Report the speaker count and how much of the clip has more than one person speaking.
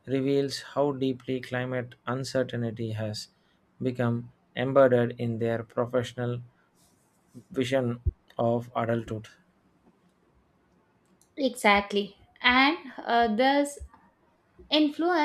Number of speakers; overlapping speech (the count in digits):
2, no overlap